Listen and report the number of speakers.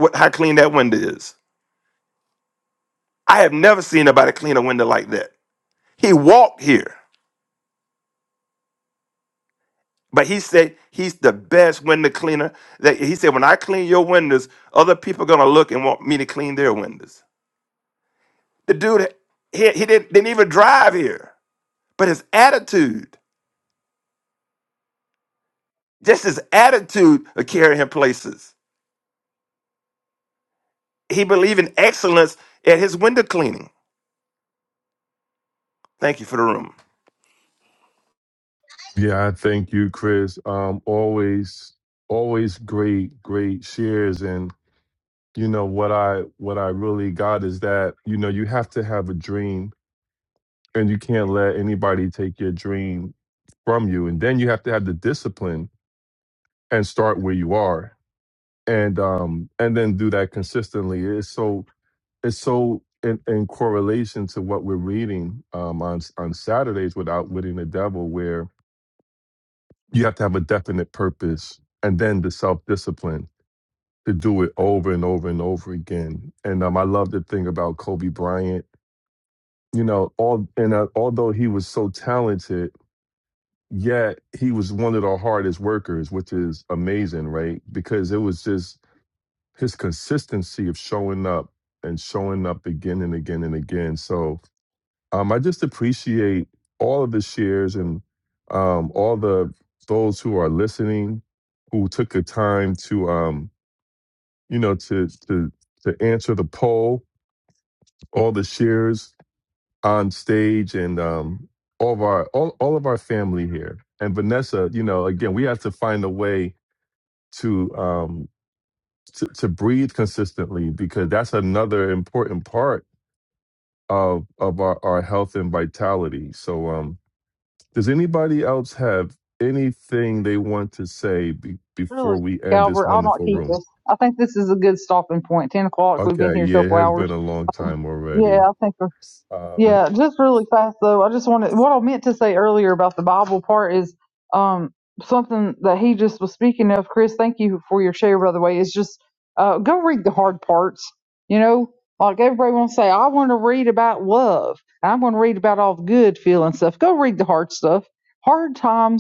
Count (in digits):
3